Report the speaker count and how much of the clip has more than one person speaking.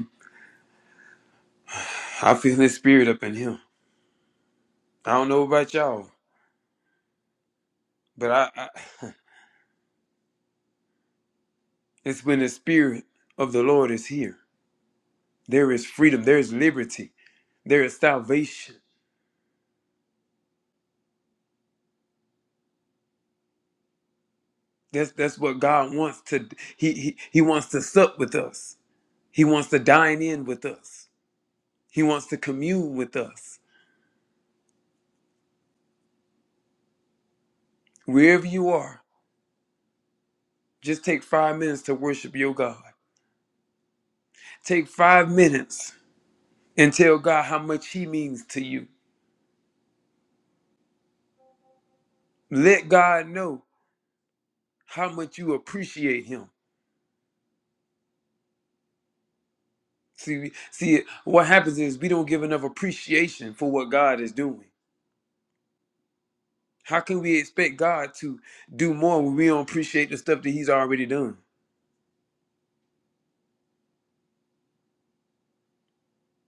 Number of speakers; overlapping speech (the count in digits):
1, no overlap